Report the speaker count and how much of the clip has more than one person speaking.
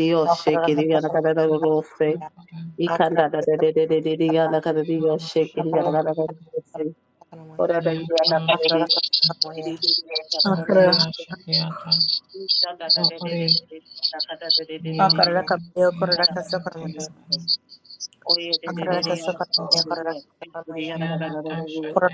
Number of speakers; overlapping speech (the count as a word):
three, about 48%